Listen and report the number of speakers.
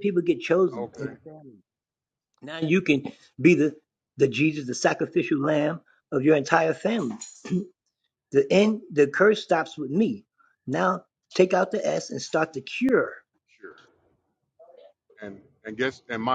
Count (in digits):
2